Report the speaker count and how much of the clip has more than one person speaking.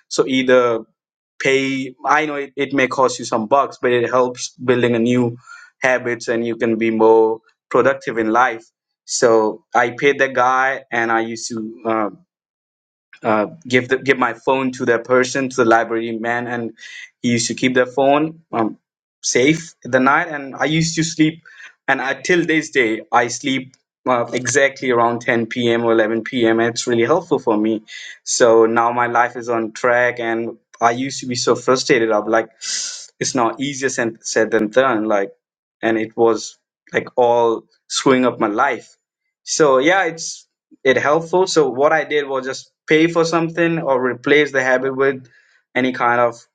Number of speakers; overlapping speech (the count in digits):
1, no overlap